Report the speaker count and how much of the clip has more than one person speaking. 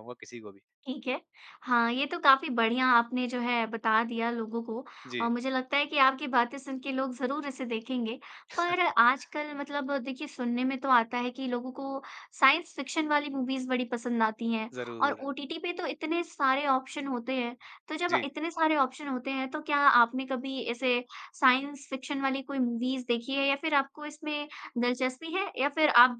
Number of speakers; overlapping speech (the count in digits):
2, about 3%